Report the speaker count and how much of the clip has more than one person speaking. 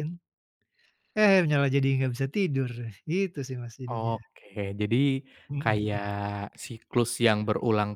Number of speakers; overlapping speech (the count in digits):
2, about 6%